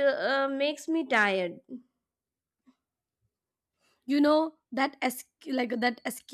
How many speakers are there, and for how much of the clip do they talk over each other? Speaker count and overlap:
2, no overlap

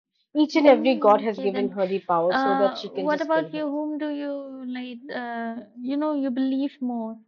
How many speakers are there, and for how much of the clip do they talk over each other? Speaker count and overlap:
2, about 29%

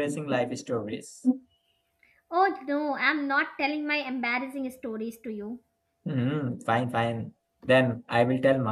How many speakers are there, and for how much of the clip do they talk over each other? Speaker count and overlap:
2, no overlap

